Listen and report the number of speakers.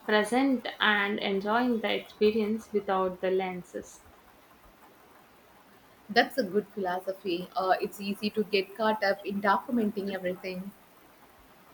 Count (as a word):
two